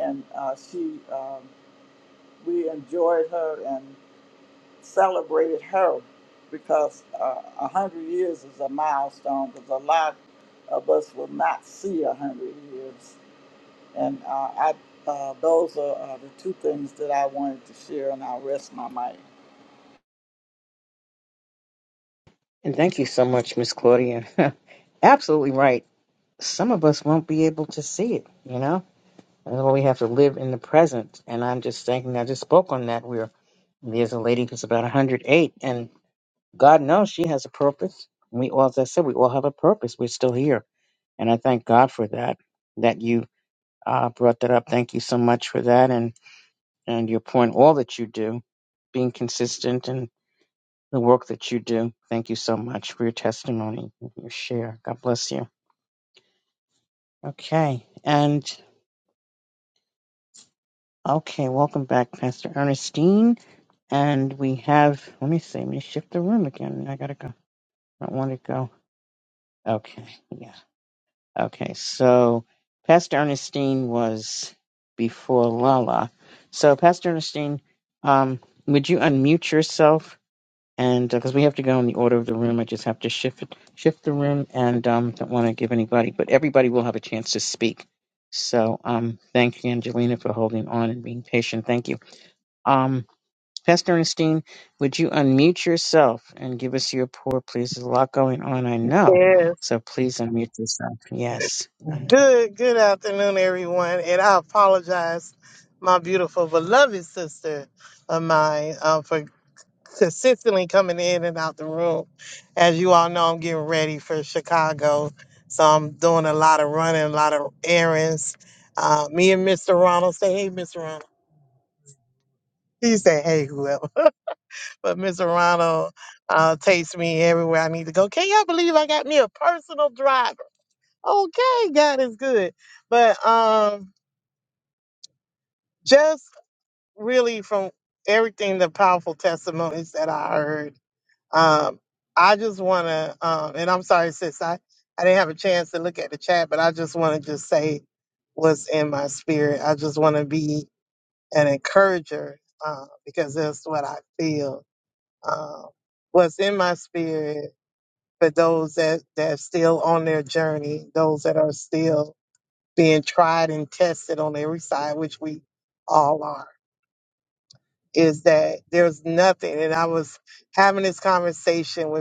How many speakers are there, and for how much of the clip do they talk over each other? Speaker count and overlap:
three, under 1%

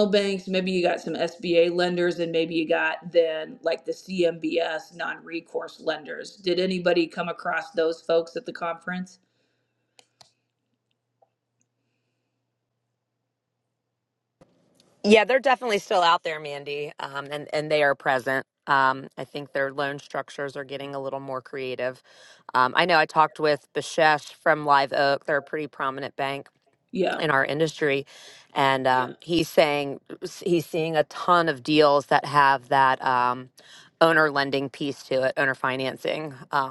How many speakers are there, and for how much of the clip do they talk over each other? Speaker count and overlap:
two, under 1%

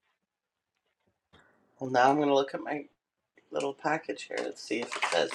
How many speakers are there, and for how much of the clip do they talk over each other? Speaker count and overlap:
one, no overlap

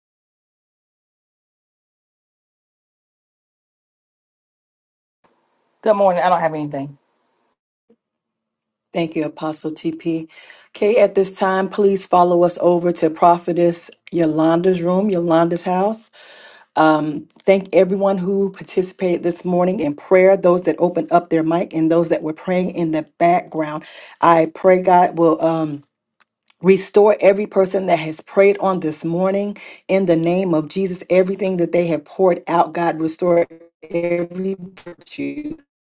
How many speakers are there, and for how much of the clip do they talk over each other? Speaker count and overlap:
two, no overlap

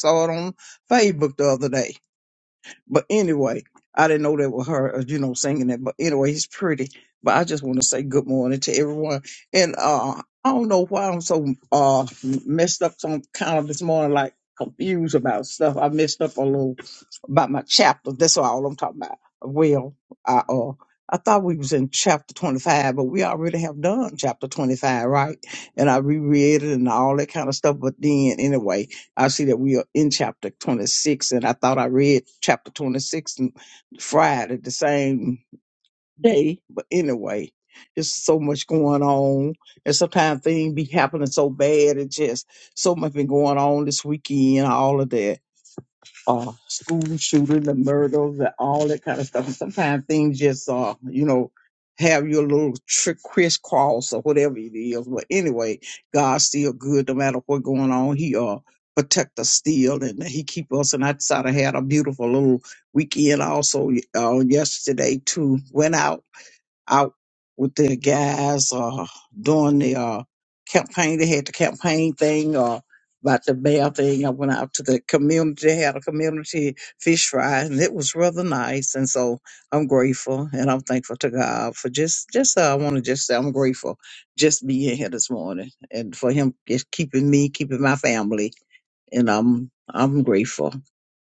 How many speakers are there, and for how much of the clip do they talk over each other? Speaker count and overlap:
one, no overlap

